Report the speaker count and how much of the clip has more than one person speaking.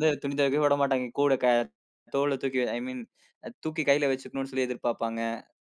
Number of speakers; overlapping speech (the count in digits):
1, no overlap